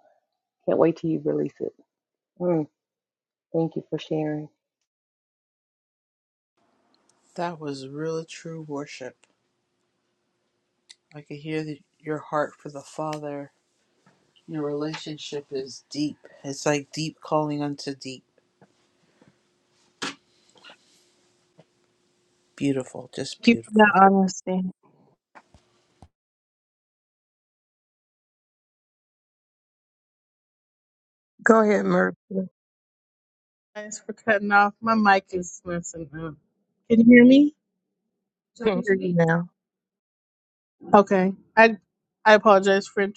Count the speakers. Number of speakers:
4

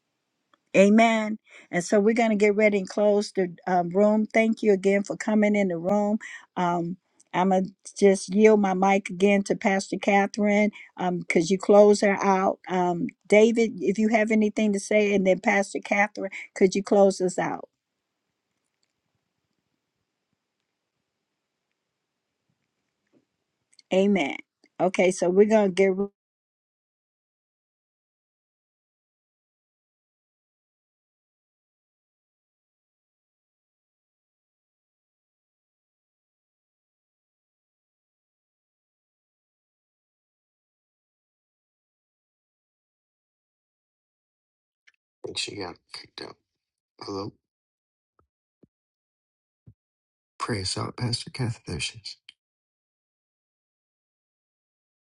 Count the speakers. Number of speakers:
2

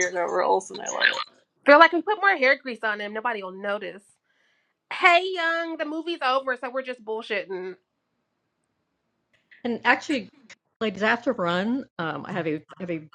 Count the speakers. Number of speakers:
3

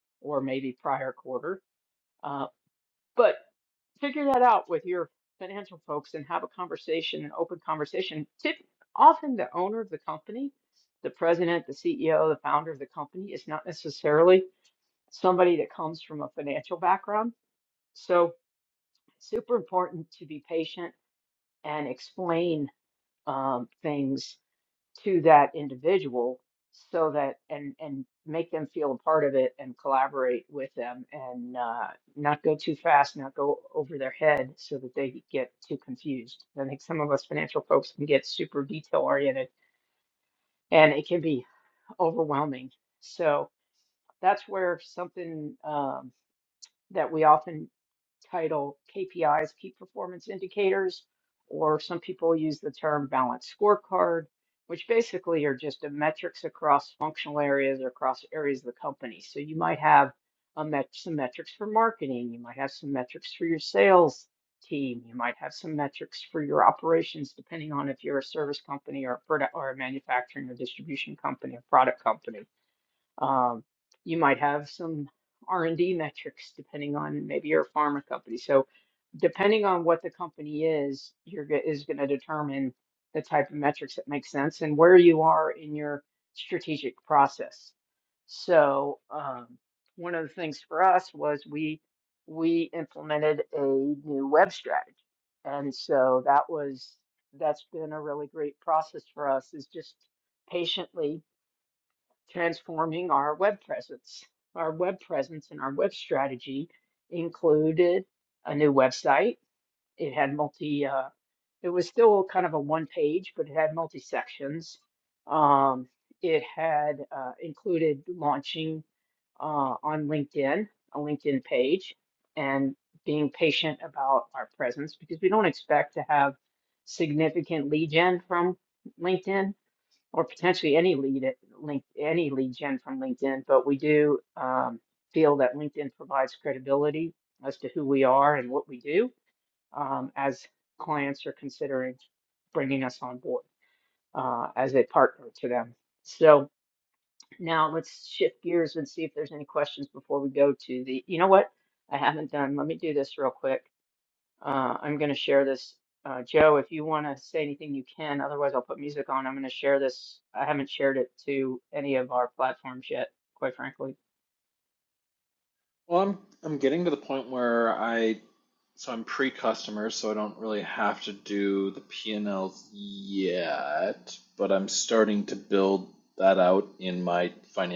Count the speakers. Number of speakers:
2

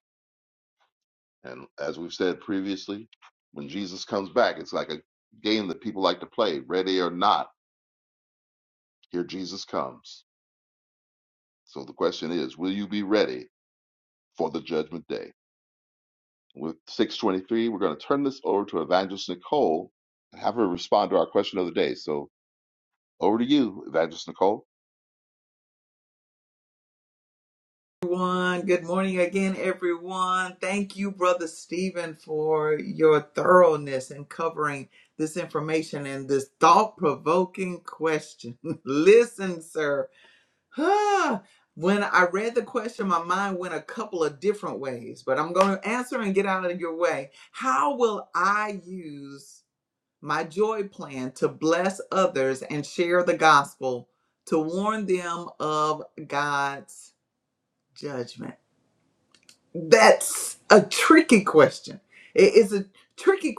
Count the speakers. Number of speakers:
2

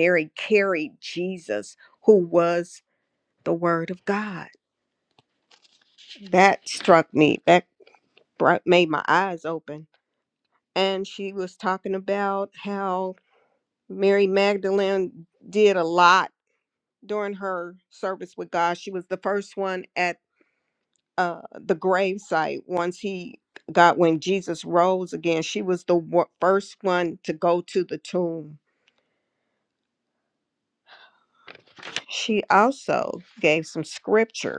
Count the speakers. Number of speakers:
1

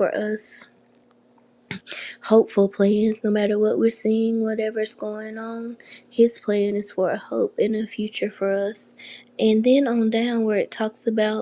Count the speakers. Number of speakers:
1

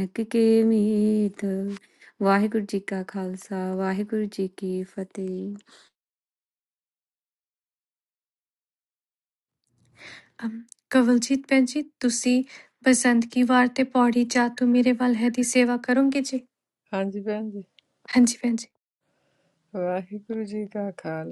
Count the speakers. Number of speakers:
3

